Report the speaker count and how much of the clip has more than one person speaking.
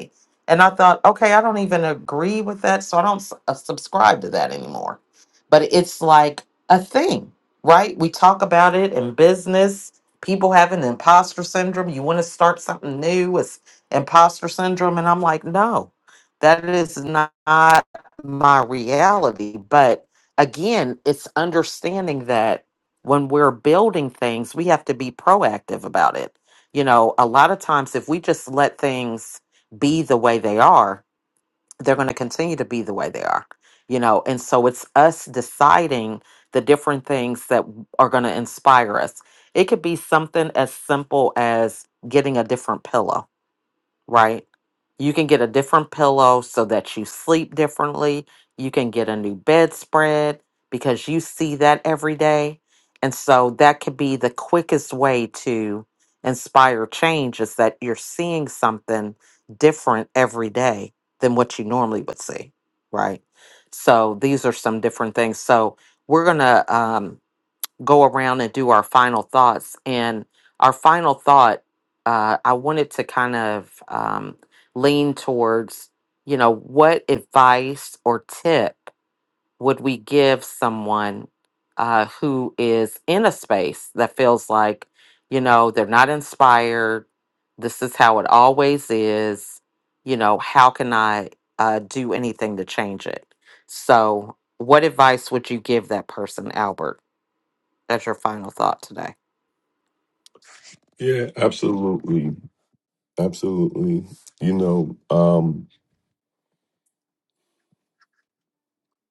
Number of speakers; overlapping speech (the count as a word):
two, no overlap